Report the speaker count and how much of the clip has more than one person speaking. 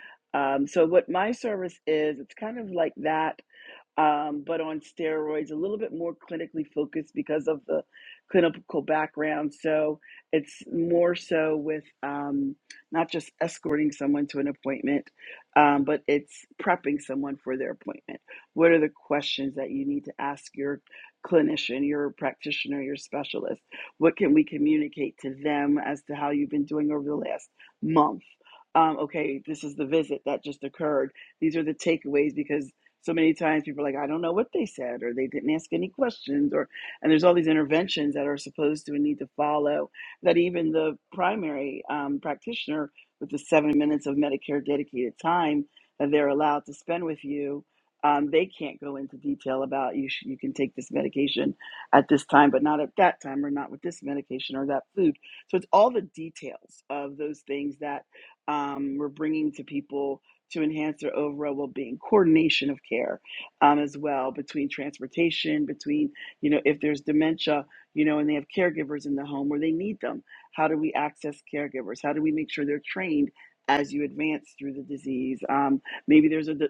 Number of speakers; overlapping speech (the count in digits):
1, no overlap